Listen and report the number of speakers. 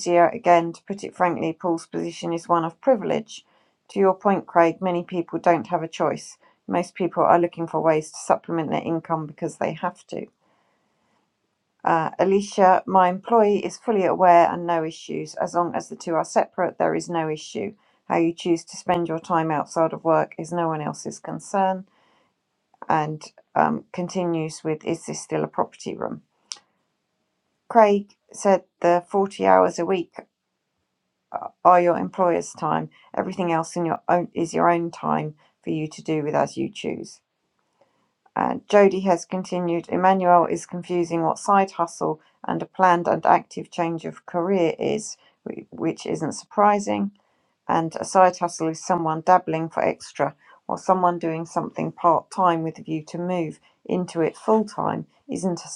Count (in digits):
1